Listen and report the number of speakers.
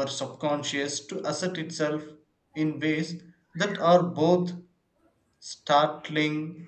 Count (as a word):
one